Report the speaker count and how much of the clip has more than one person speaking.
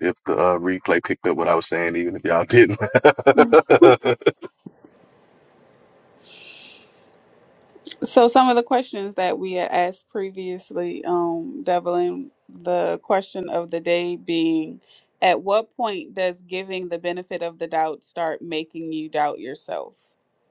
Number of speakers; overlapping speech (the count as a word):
two, no overlap